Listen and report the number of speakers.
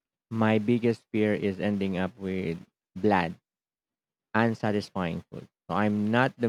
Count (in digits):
1